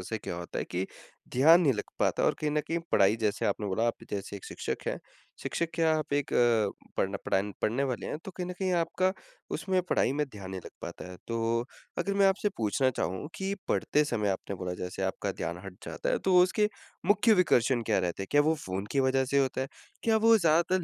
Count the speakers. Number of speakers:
1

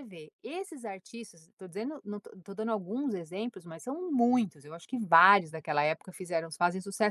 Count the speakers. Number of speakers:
1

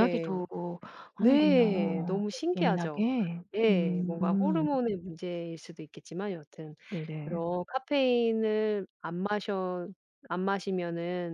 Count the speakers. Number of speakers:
2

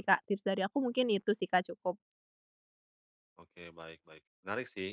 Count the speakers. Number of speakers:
2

